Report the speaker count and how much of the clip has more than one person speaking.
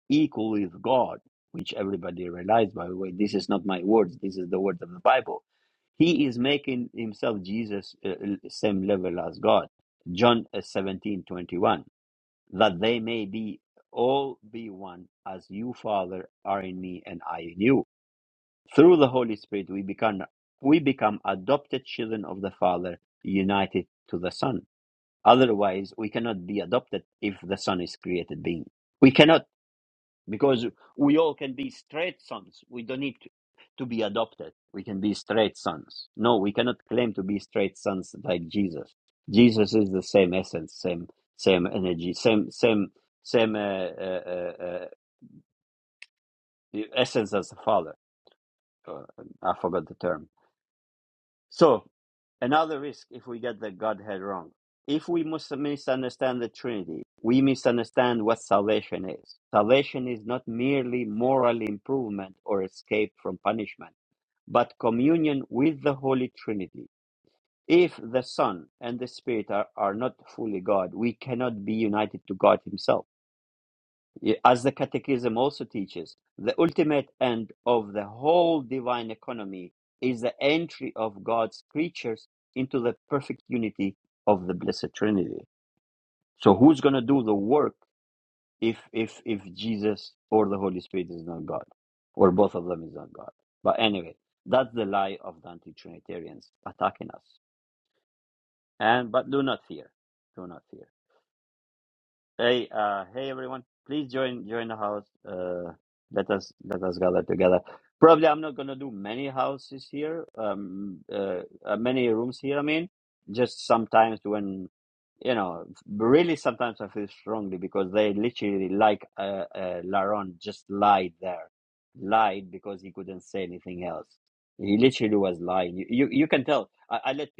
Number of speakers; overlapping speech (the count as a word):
one, no overlap